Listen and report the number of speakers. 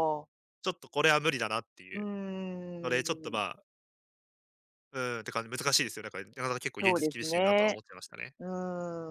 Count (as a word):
two